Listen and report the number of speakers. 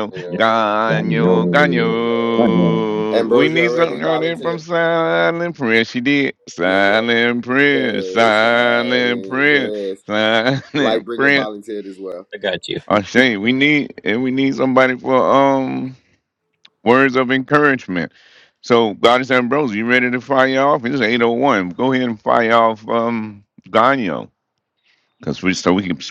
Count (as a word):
three